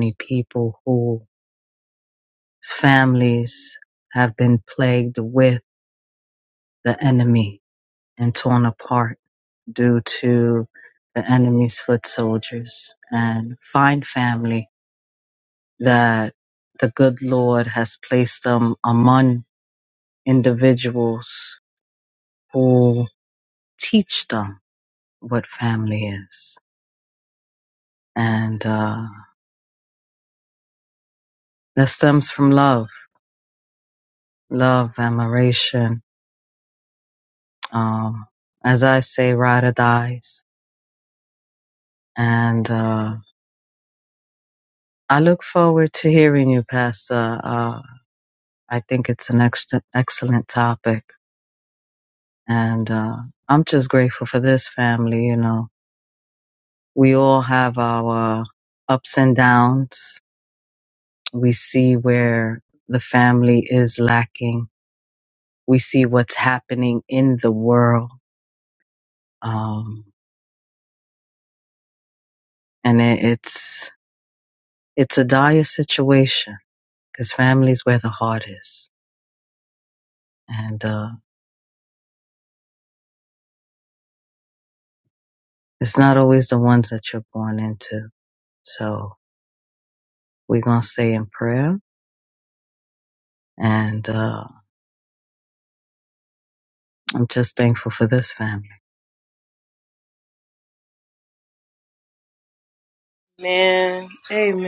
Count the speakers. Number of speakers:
two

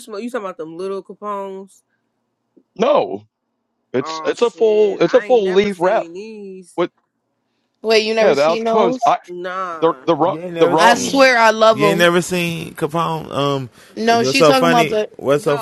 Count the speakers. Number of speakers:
four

